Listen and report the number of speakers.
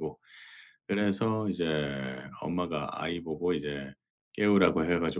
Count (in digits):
1